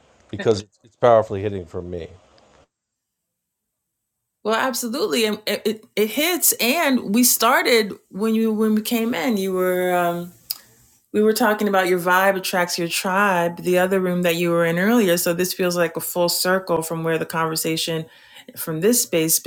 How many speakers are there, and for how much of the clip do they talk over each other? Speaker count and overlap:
2, no overlap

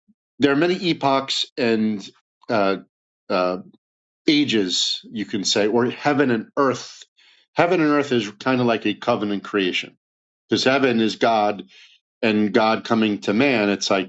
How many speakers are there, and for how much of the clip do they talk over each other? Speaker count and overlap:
1, no overlap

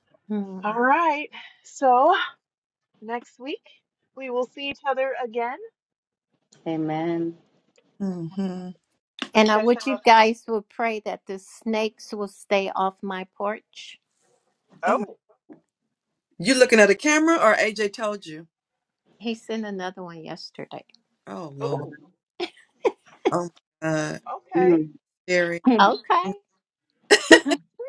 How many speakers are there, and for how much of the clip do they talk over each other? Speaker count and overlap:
4, about 5%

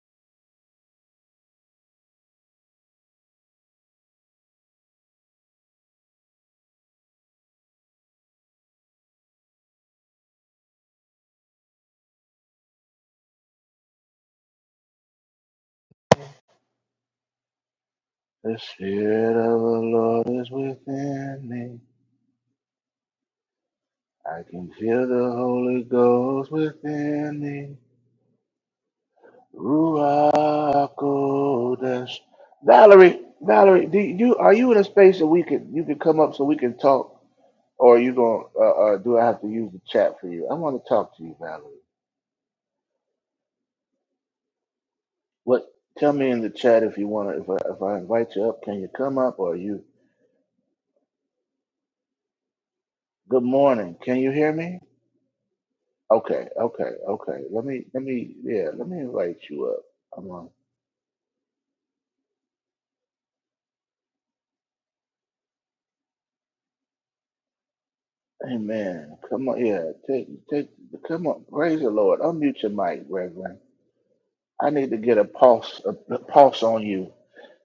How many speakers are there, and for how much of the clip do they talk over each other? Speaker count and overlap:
1, no overlap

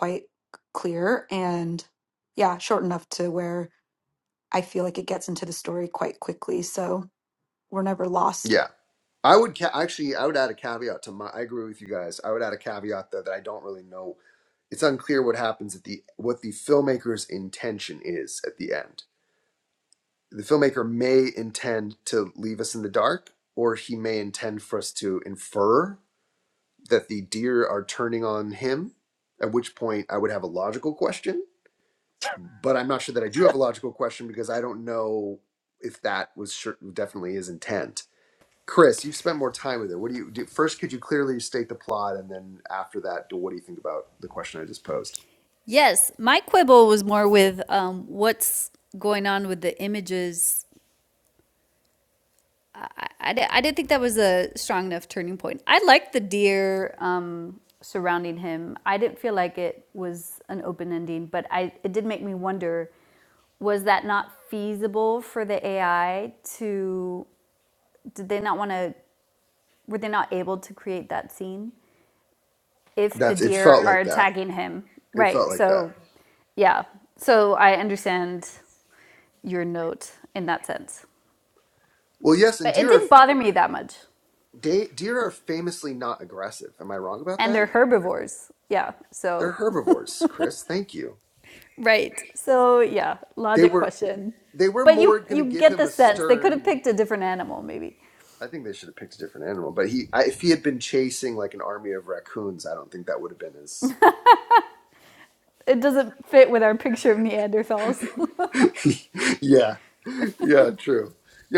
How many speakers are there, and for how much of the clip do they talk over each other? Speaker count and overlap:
3, about 5%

